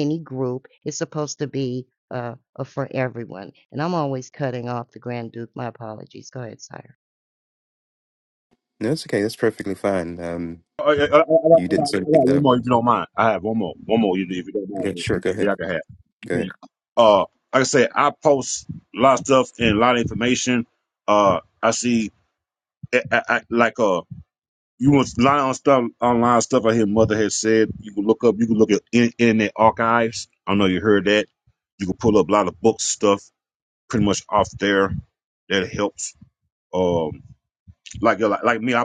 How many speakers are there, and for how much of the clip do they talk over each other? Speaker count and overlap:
3, about 5%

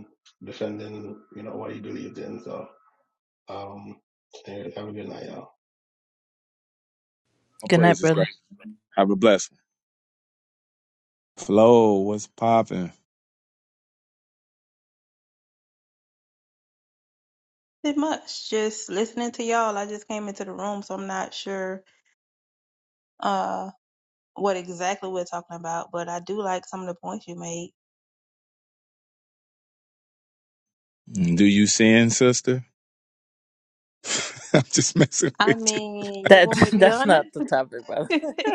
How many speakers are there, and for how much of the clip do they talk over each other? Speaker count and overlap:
4, about 5%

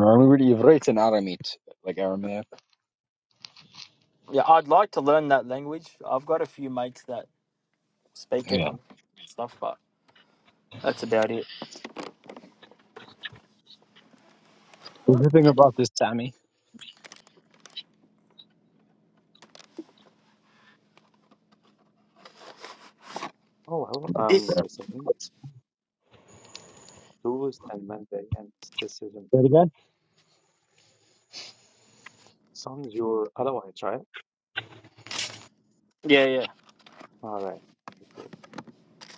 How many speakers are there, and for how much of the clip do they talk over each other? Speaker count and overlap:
3, about 2%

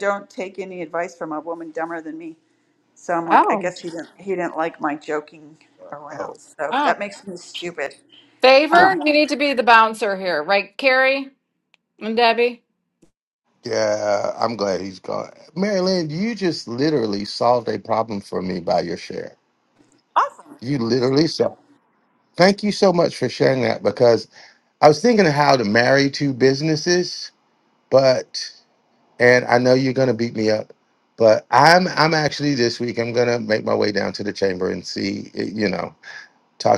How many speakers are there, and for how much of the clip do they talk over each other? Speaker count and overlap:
3, about 3%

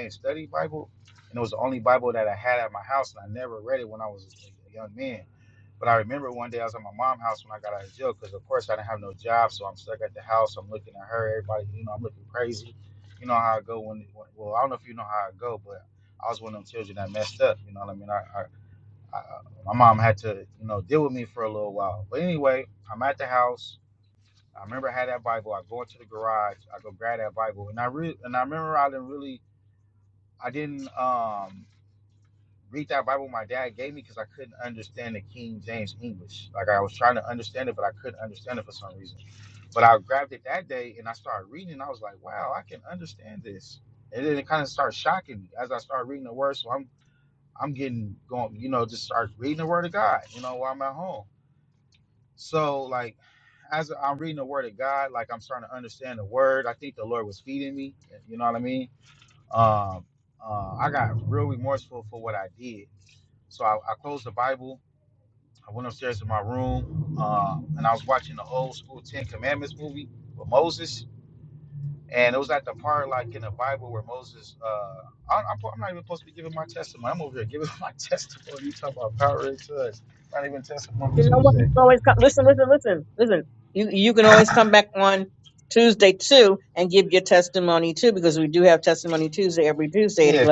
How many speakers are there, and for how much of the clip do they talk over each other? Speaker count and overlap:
2, about 1%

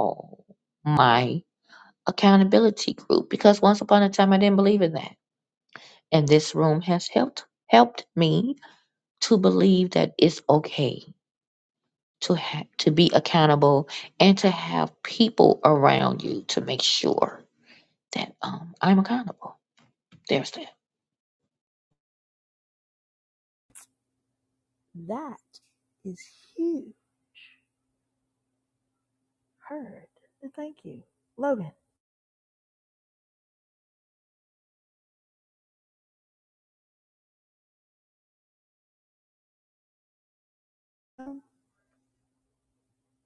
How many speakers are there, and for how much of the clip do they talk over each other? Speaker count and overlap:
2, no overlap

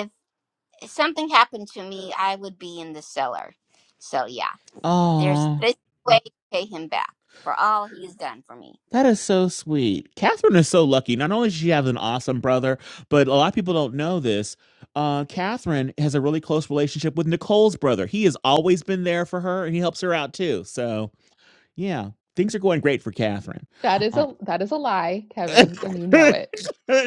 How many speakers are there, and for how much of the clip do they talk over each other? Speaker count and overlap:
3, about 2%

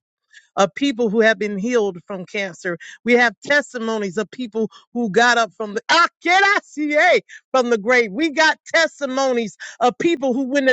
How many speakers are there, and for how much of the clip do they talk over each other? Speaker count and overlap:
1, no overlap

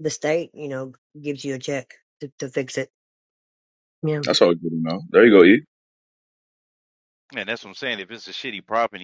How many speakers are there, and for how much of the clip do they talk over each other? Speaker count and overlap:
3, under 1%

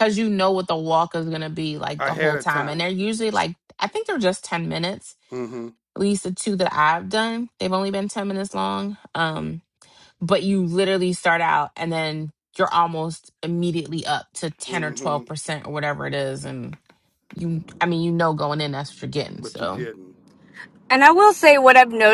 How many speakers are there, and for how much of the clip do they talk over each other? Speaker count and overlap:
3, about 8%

